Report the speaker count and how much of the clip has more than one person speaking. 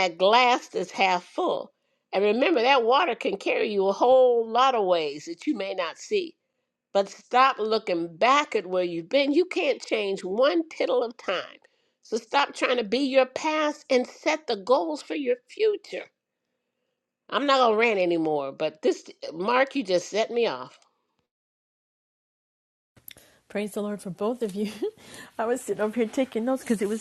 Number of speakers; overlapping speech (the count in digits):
2, no overlap